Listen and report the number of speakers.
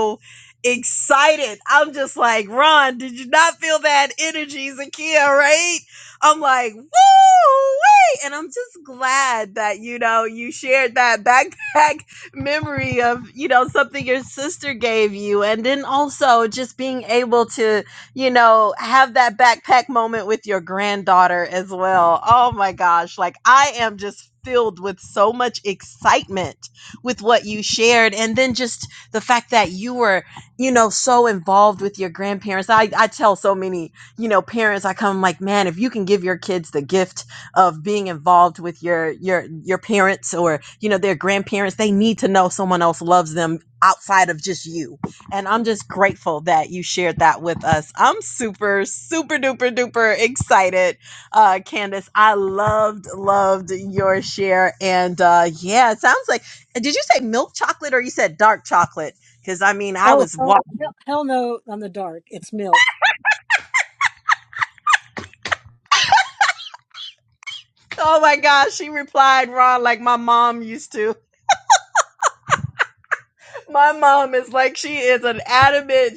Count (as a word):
two